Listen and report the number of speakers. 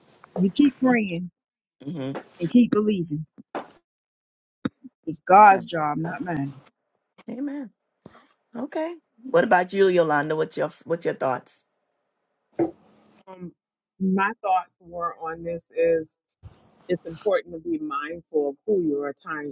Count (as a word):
three